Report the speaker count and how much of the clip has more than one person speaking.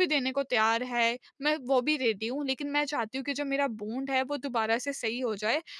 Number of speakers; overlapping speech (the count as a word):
one, no overlap